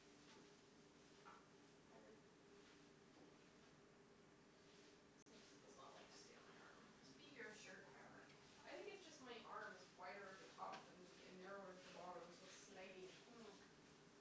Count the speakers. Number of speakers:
two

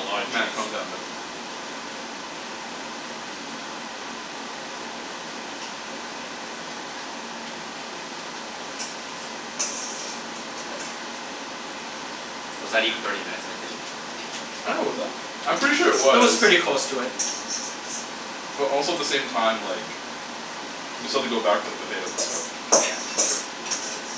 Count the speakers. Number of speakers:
three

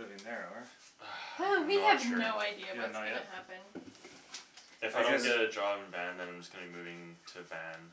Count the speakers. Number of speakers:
three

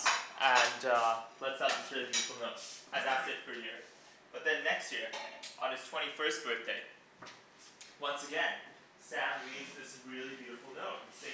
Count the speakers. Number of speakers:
one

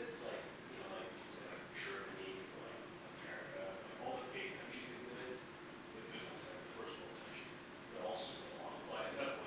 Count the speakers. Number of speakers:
one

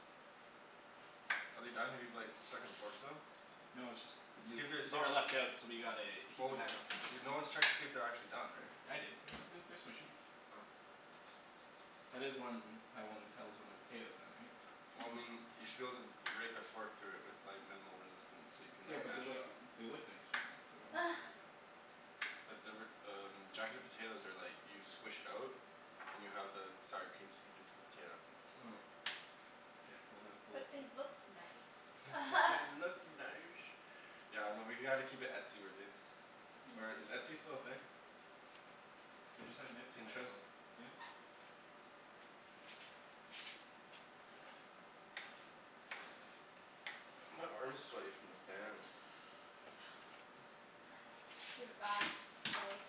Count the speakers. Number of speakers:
three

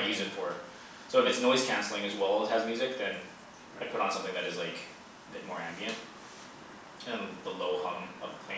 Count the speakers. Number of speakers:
one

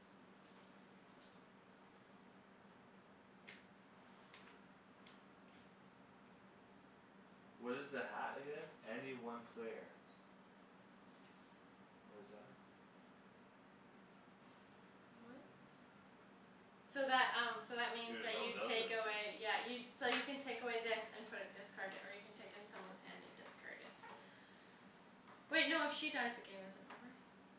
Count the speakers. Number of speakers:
two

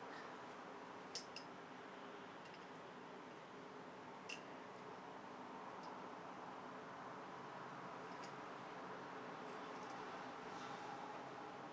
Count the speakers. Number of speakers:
zero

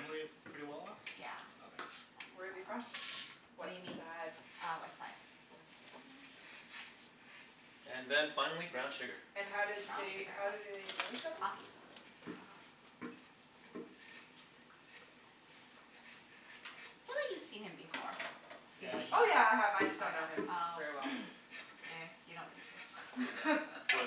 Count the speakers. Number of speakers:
four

